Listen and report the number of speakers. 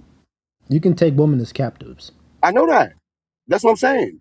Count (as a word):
two